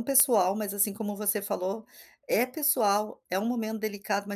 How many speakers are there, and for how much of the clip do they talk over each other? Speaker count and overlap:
1, no overlap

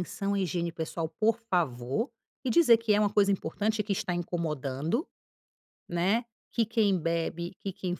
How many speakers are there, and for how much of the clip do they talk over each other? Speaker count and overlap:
1, no overlap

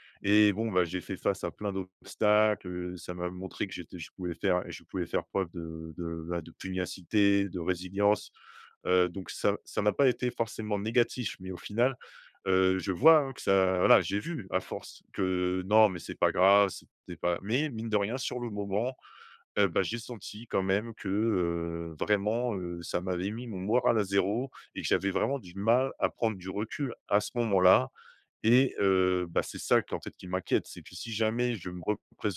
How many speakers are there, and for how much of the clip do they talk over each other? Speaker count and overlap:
1, no overlap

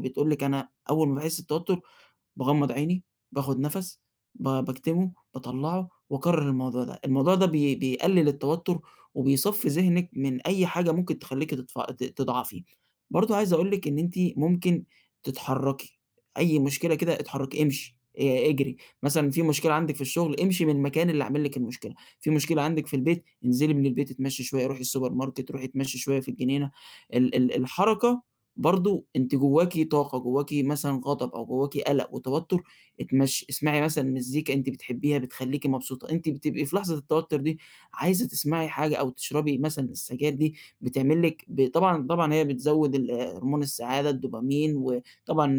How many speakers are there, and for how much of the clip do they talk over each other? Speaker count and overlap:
1, no overlap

